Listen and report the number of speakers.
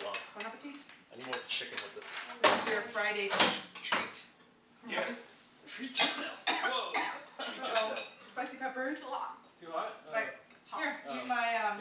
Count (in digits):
4